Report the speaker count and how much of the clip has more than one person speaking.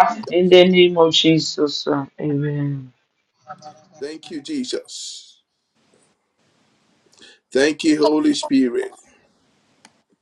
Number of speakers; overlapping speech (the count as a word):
two, about 1%